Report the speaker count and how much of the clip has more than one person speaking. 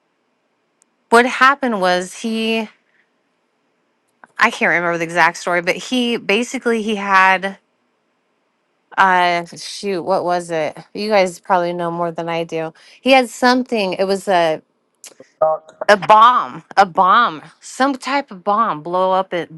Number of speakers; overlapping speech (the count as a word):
one, no overlap